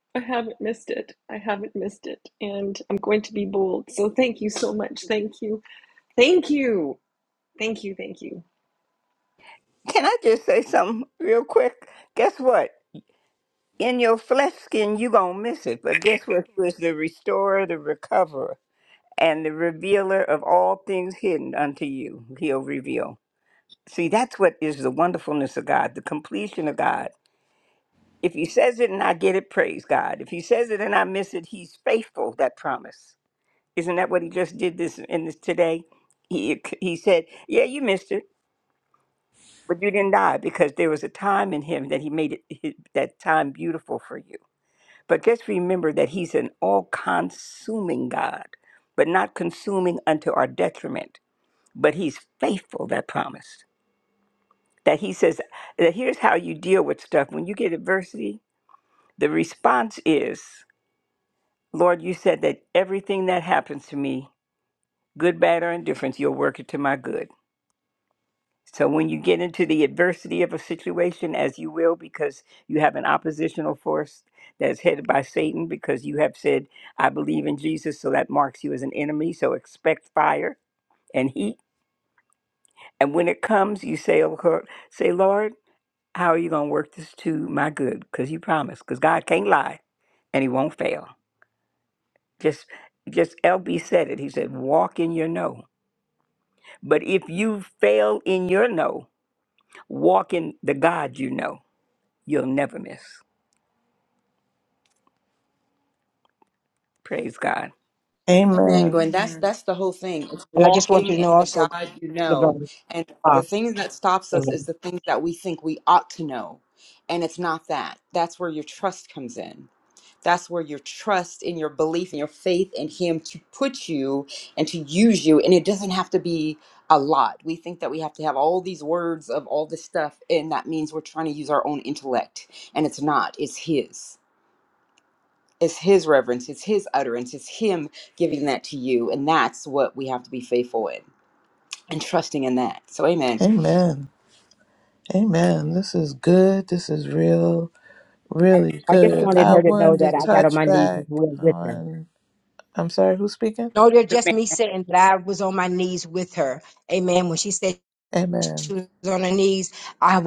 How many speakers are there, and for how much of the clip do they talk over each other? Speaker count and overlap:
five, about 3%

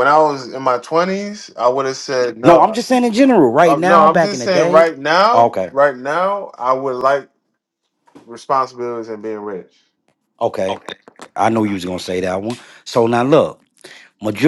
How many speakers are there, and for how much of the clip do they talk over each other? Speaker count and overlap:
two, about 13%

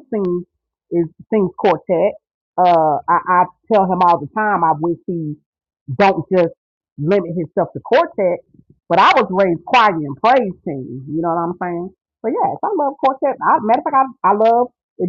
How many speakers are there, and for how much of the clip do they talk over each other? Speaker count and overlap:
one, no overlap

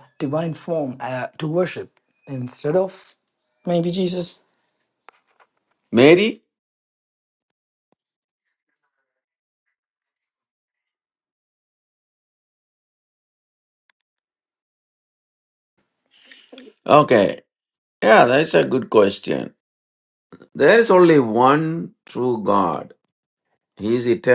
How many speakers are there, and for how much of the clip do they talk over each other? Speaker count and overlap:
two, no overlap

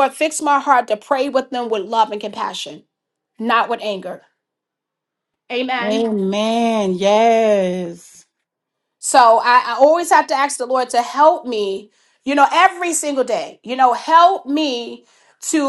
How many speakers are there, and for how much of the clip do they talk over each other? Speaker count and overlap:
two, about 2%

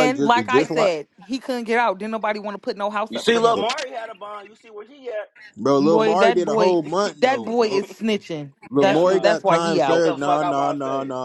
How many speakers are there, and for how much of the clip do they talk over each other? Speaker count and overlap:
three, about 48%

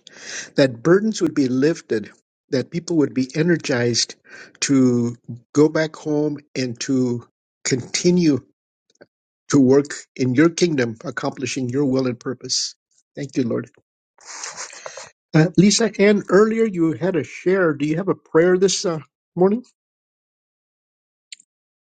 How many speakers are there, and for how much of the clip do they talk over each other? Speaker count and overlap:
one, no overlap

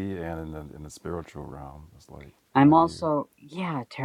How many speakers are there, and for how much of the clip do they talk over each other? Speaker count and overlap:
two, about 11%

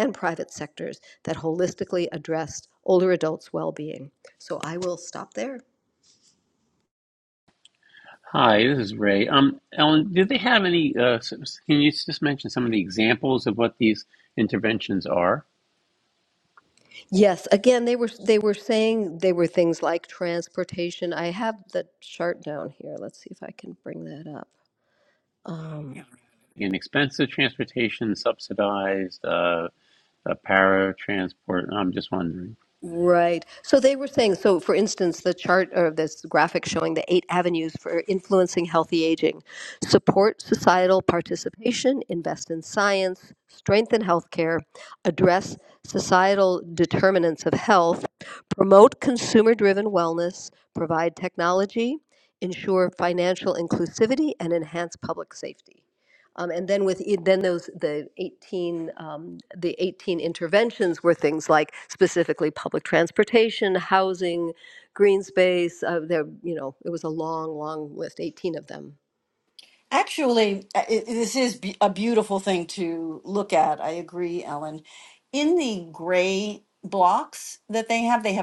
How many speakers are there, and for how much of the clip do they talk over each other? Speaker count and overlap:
three, no overlap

